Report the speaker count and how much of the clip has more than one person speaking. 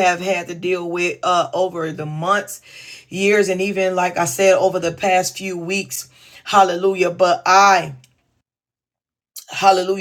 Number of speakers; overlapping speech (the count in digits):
1, no overlap